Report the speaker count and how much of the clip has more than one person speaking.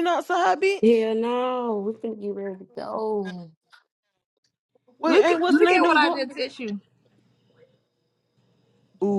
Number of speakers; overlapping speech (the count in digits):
3, about 13%